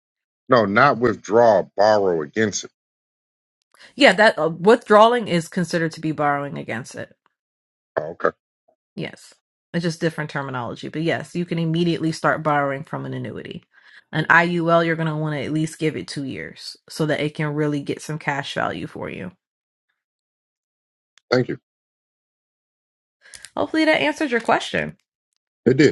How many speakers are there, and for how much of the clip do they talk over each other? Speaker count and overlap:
2, no overlap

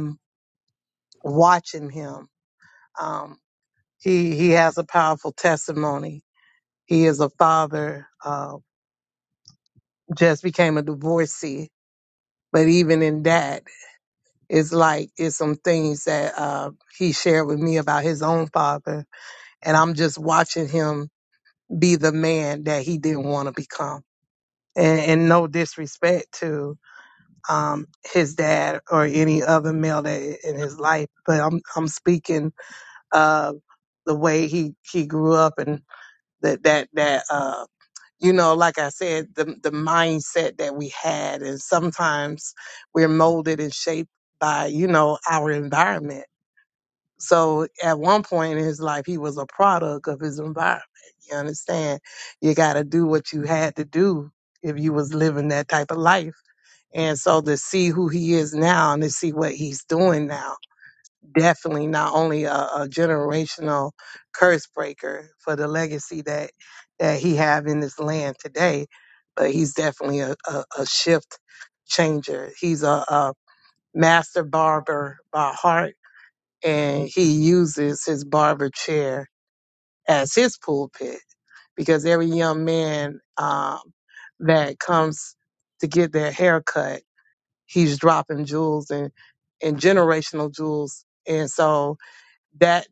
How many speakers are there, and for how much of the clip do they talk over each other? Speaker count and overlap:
1, no overlap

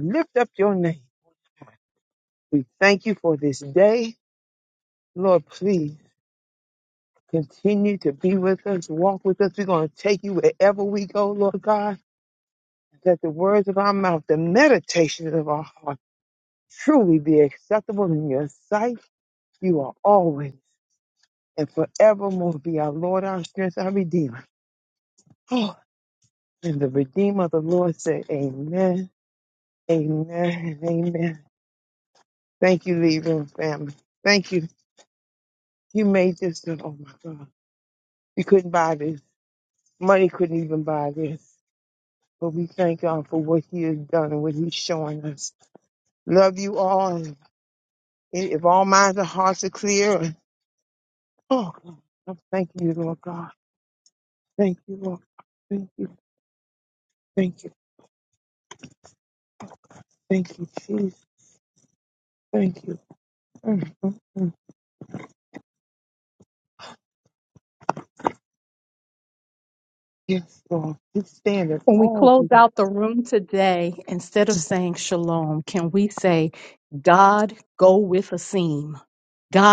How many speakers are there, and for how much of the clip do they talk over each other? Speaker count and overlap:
2, about 1%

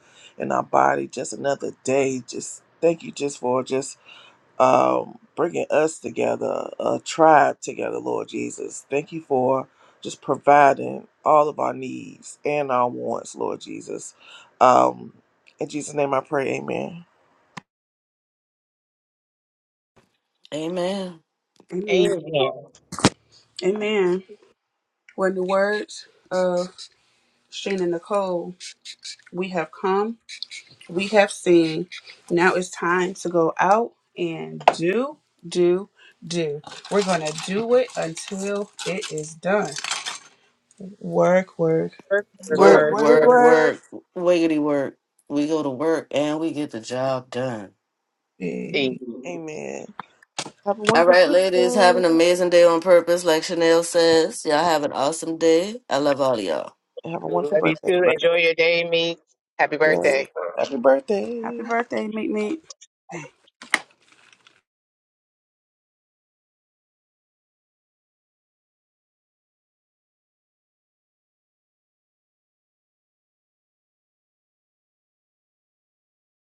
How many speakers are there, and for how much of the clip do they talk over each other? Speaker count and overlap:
4, about 6%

